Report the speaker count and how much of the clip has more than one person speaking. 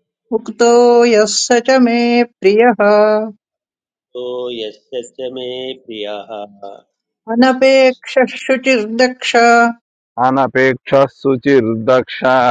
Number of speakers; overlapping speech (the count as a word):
three, about 3%